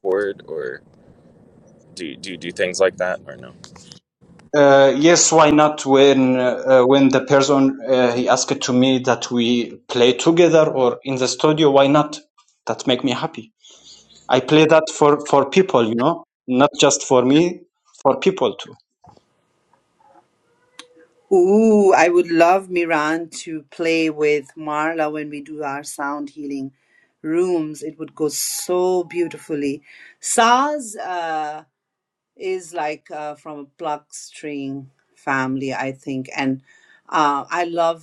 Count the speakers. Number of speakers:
3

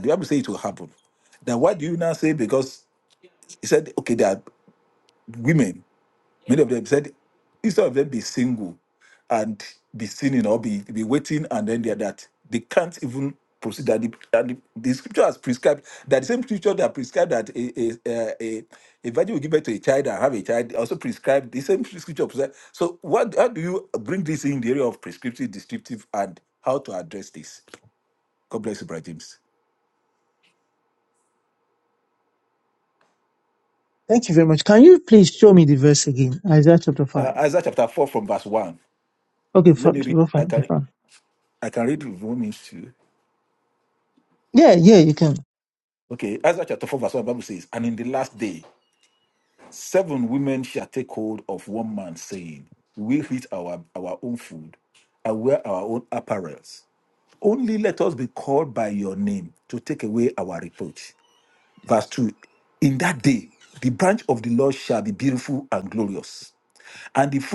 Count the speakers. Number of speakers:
2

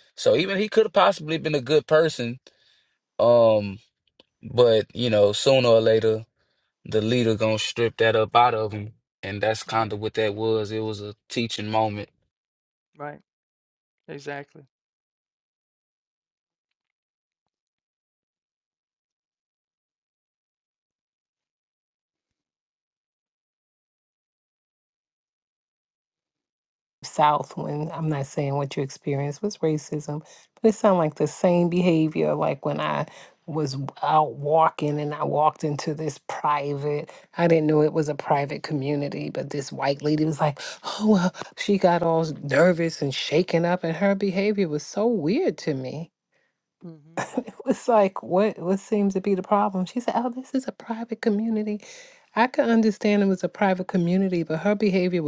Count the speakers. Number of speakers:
3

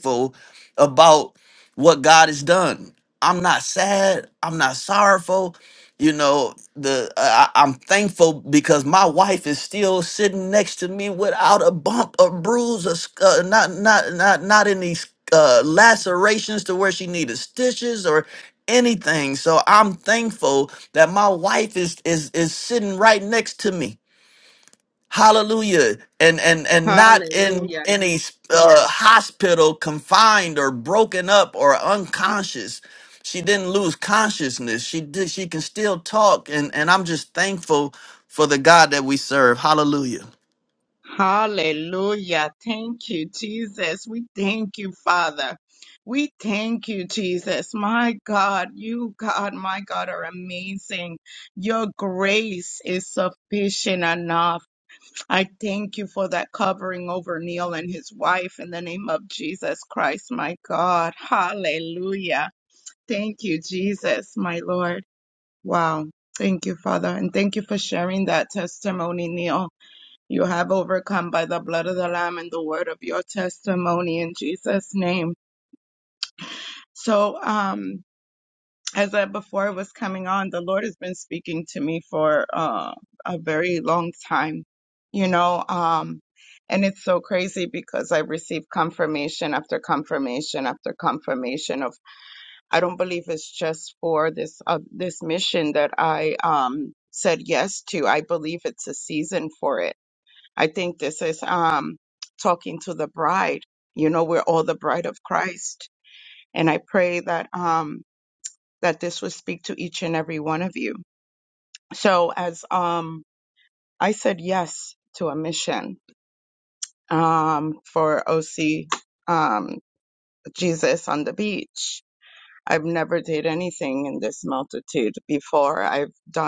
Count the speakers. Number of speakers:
2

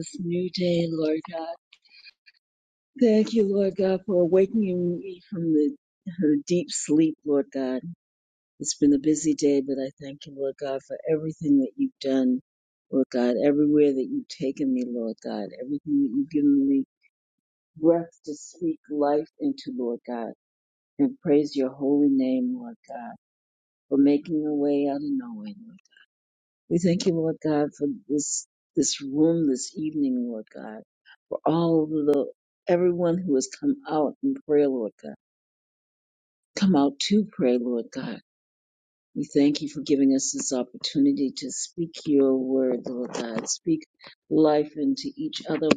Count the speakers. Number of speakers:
1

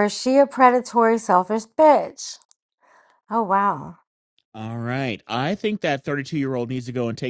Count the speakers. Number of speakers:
2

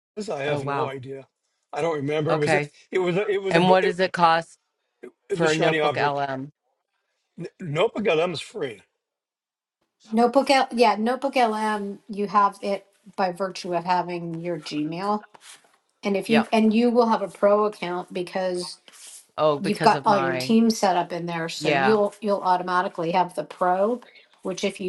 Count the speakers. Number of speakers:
3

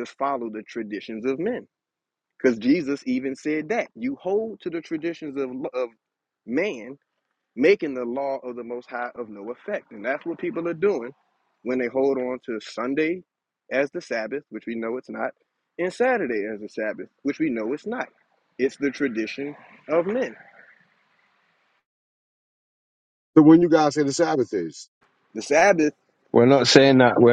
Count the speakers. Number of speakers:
3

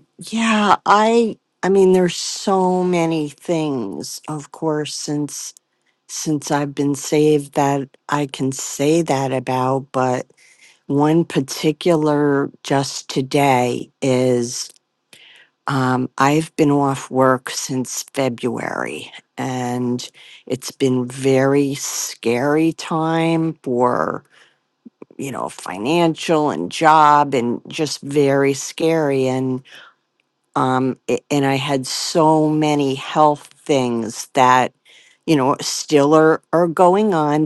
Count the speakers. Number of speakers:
1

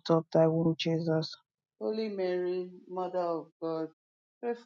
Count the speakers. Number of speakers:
2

